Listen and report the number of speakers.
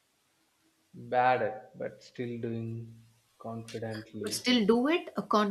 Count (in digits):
2